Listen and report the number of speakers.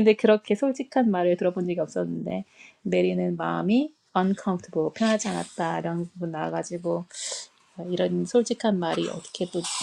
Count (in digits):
1